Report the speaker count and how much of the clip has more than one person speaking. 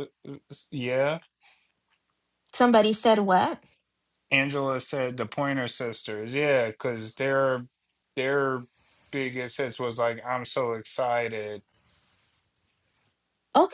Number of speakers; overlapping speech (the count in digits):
2, no overlap